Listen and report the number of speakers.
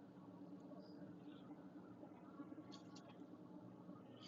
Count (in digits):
0